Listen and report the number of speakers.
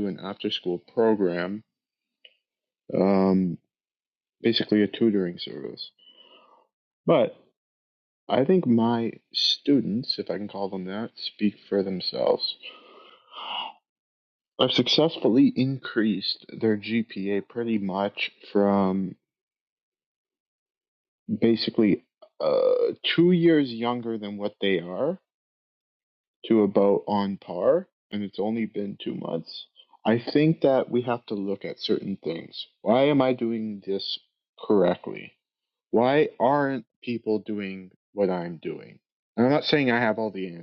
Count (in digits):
1